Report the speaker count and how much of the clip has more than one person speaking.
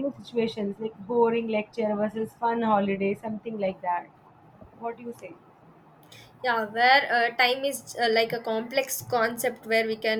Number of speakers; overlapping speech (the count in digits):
2, no overlap